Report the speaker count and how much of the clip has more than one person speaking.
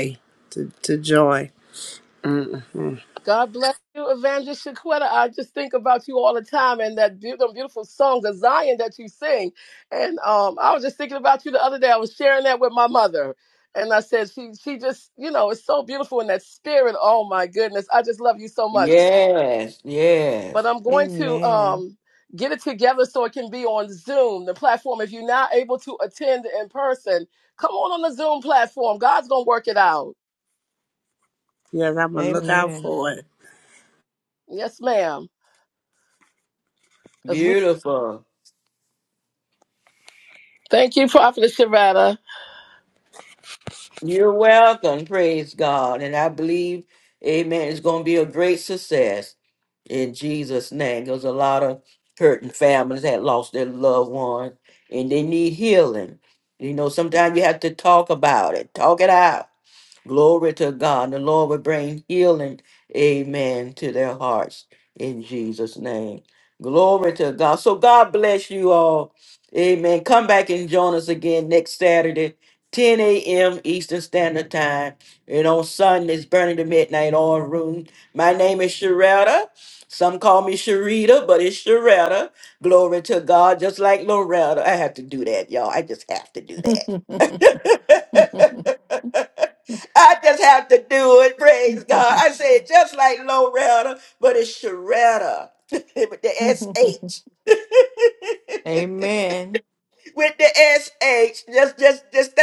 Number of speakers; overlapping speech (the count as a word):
four, about 2%